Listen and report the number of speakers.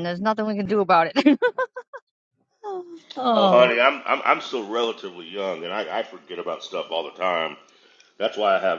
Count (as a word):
two